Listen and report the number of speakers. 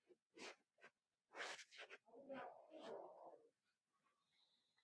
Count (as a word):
zero